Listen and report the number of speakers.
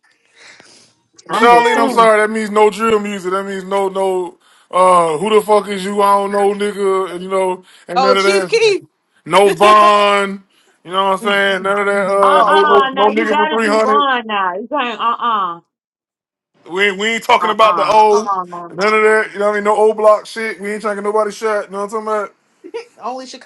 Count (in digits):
3